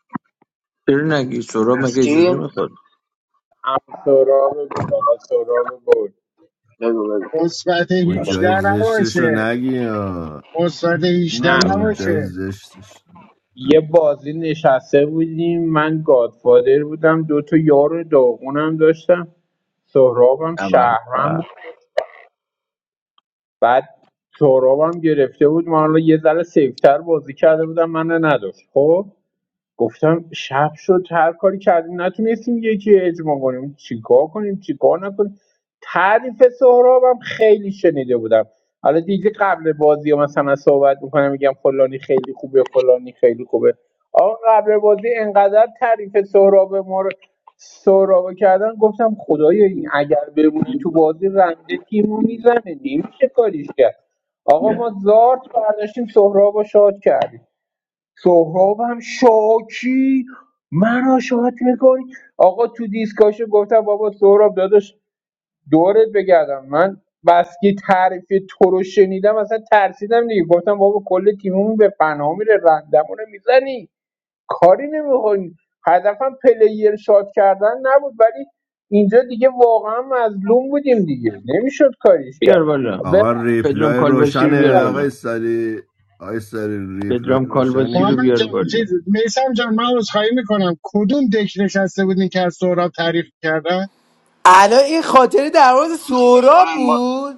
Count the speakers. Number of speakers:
6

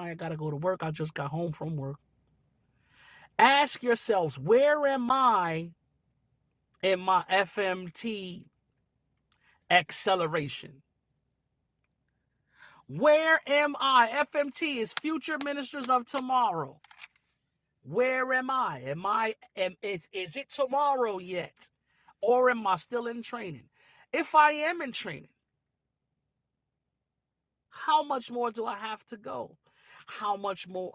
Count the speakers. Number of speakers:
1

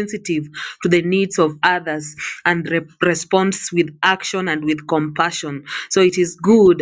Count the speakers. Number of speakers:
1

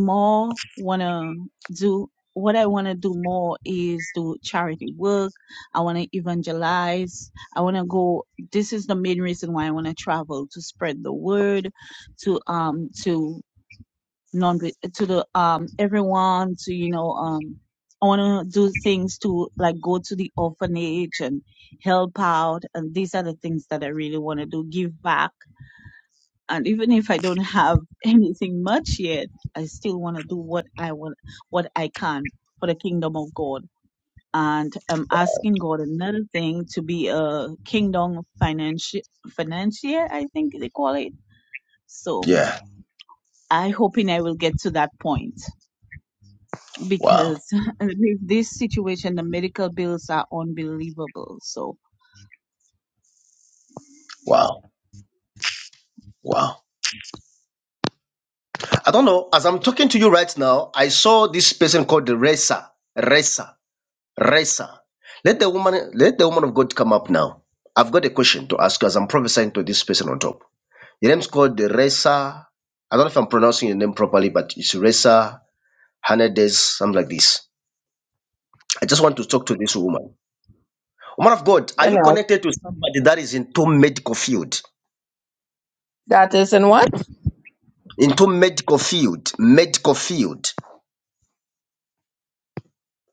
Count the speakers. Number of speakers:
3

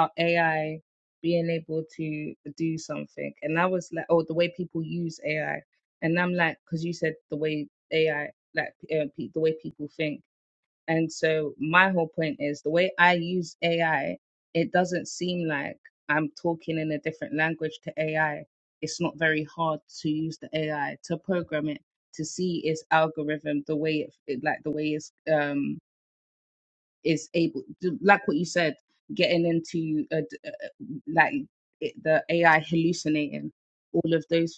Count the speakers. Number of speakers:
1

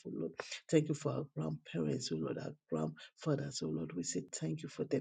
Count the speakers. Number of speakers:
1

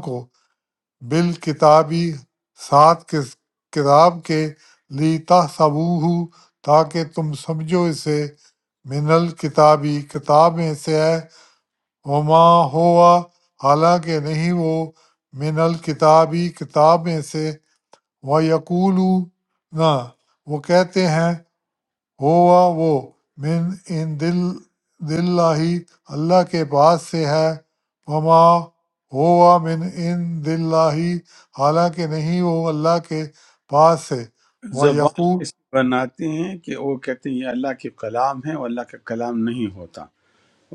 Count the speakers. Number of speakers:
2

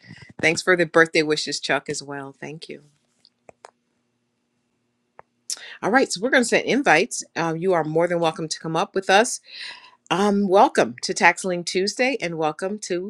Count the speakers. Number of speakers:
1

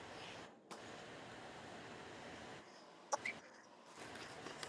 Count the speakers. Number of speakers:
0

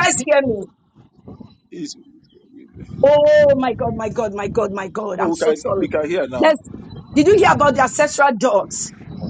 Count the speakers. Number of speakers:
2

